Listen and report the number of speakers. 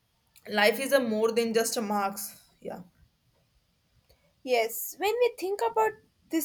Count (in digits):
2